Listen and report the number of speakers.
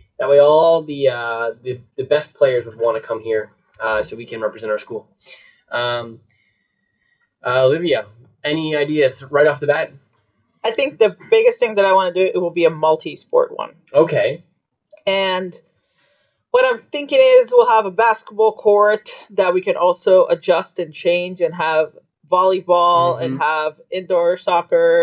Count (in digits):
2